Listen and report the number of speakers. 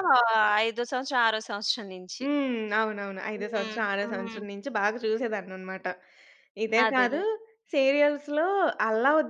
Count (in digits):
2